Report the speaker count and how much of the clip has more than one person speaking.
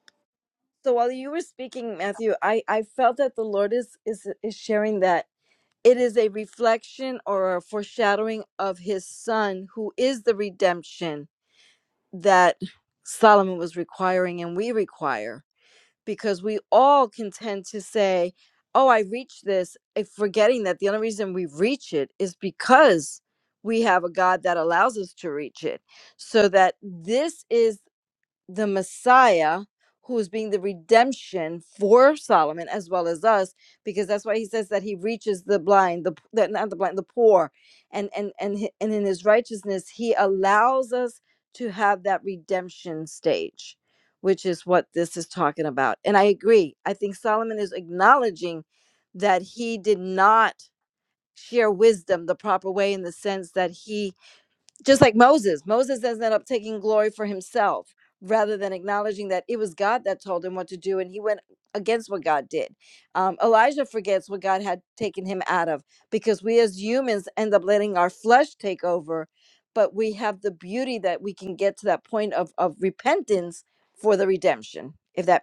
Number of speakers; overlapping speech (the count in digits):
1, no overlap